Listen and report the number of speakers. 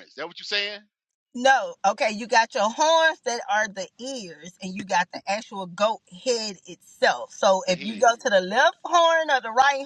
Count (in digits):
2